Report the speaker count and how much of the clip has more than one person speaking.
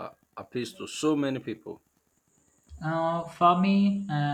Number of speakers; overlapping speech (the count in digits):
2, no overlap